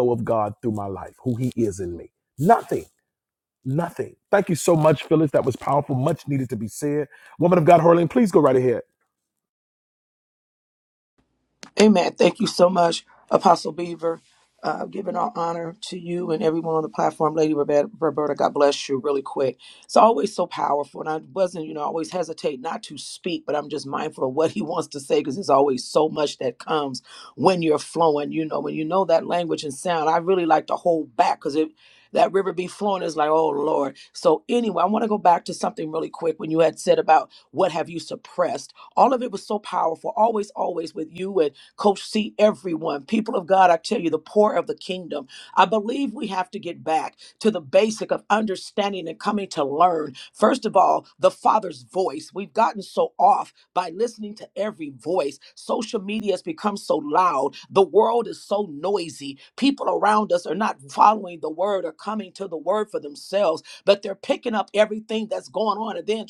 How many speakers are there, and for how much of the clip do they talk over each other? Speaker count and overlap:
two, no overlap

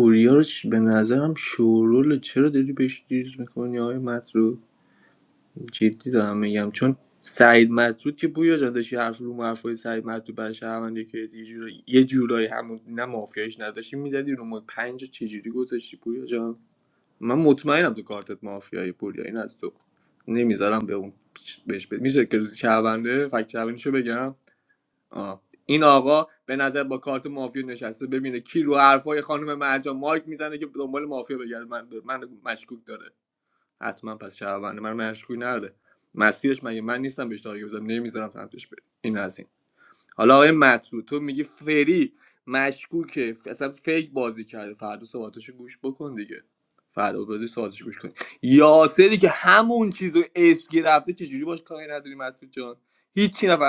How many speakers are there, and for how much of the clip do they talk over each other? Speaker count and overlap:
one, no overlap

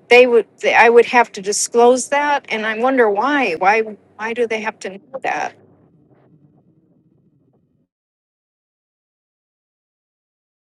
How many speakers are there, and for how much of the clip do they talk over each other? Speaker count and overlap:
one, no overlap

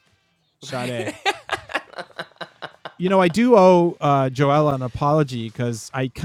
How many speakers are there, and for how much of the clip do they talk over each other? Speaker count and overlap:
one, no overlap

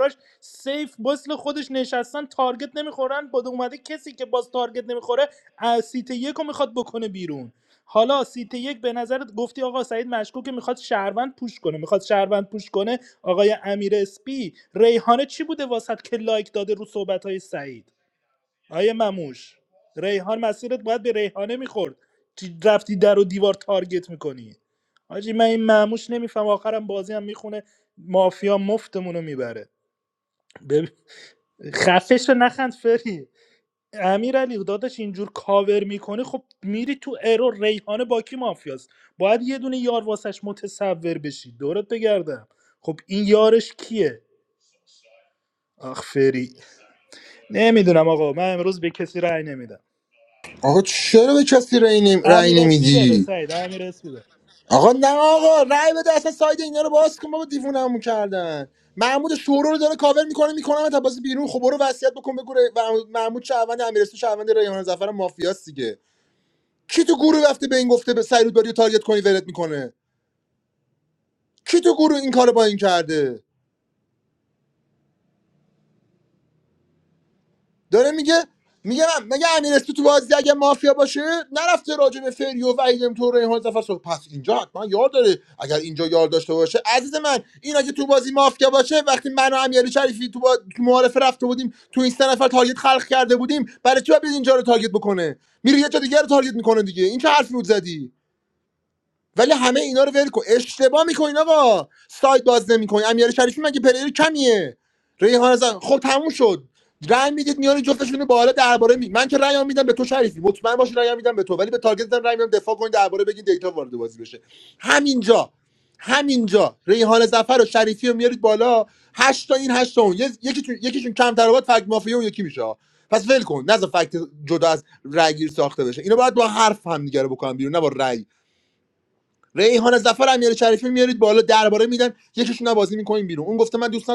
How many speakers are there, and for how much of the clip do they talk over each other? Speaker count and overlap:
two, about 1%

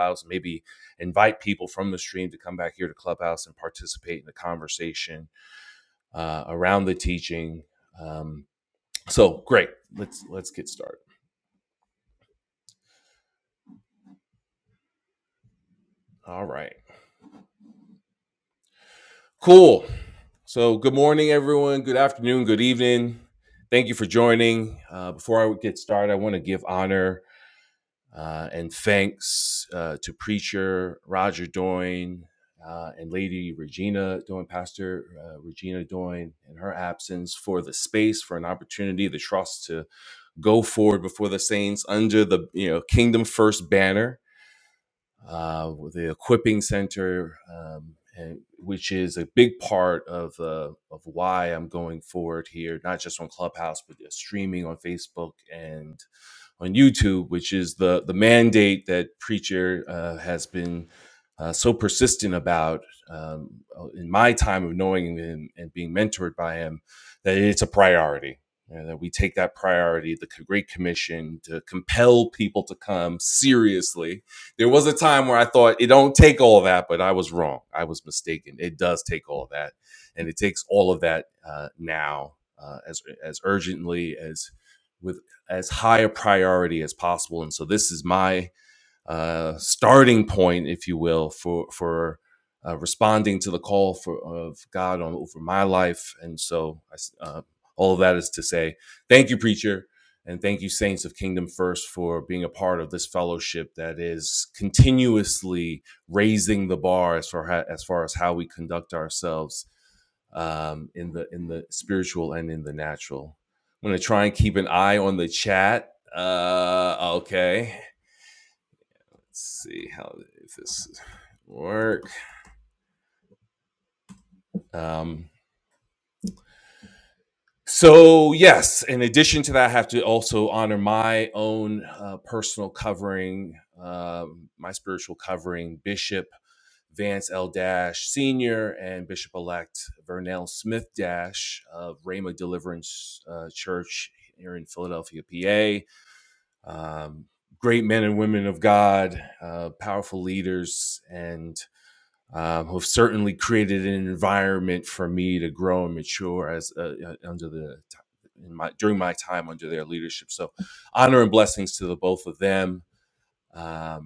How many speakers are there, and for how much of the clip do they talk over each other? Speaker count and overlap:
one, no overlap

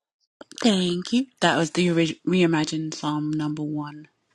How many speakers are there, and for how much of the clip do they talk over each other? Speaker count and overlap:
one, no overlap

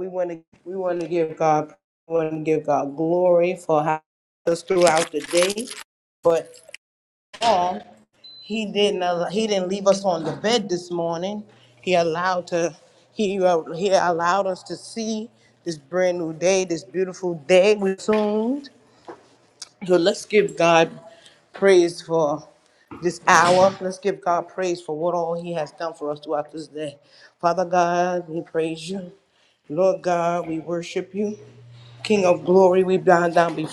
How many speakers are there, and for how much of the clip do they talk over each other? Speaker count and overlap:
one, no overlap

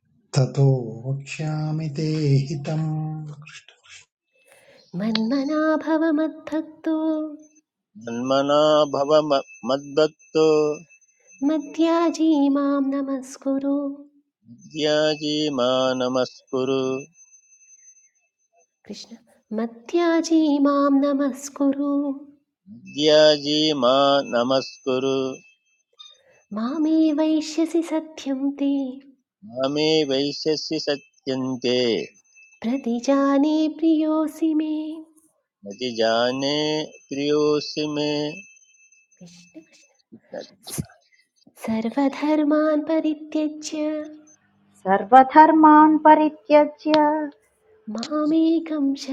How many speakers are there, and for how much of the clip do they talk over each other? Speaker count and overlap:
four, no overlap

